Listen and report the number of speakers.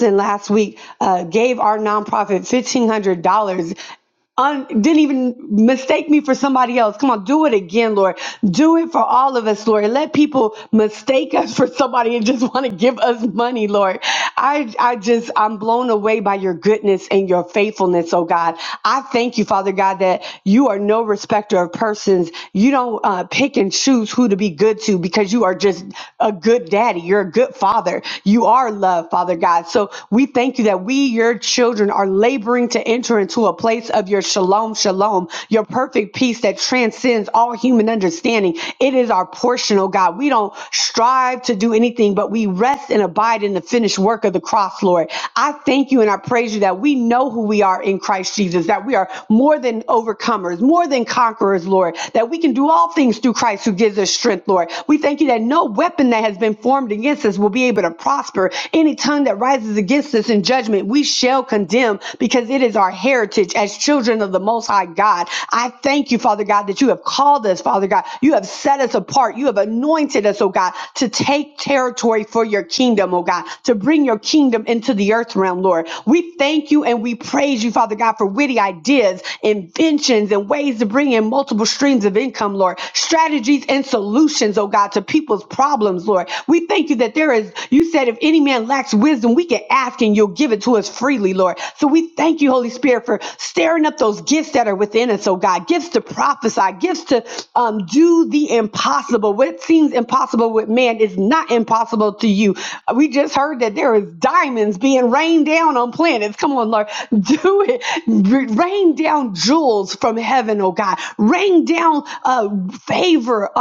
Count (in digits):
1